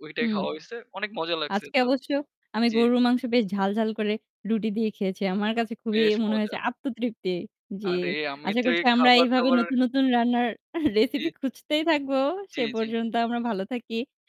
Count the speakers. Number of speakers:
2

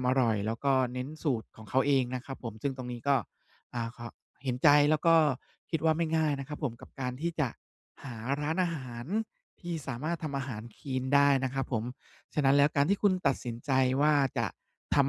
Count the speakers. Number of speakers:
1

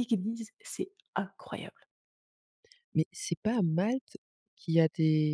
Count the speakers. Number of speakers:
2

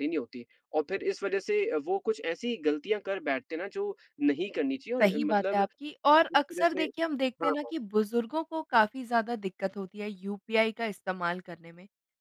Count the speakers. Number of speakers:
2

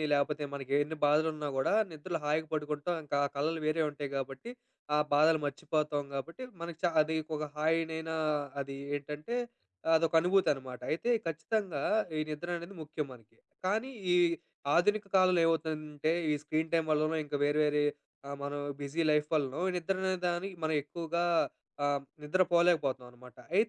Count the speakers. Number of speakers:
1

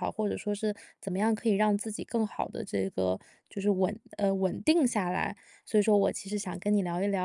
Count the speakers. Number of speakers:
1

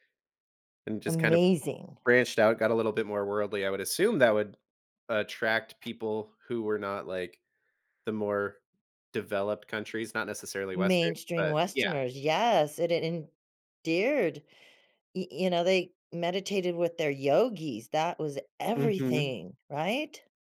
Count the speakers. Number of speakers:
2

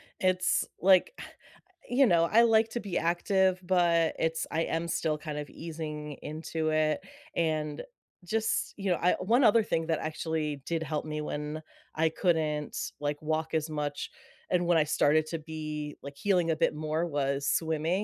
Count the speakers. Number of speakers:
1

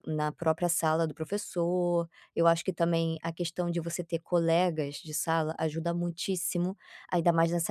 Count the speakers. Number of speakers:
1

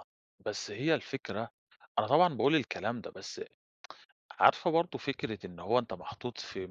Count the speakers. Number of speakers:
1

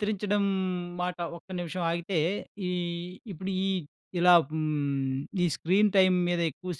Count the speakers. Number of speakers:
1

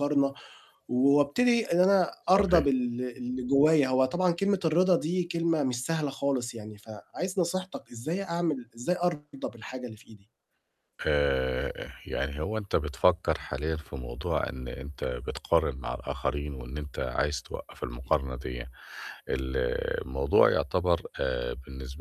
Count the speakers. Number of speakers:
2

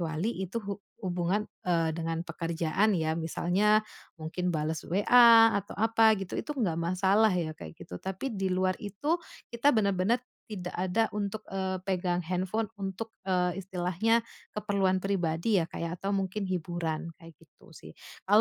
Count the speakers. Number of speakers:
1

